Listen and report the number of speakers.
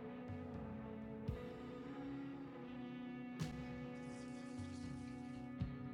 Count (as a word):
zero